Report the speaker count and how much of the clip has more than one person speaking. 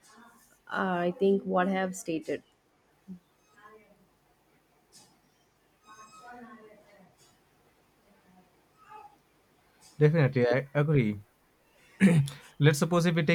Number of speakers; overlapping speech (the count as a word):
two, no overlap